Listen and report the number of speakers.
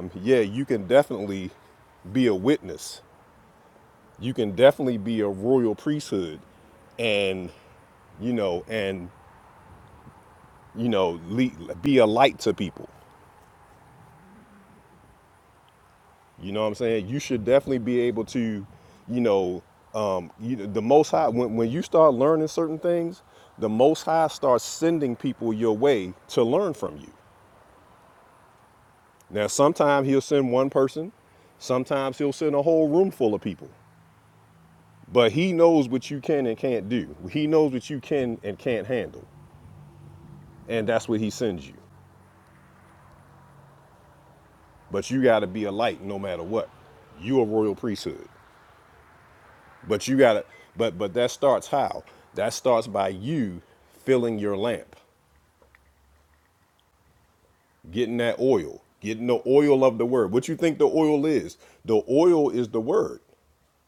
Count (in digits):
1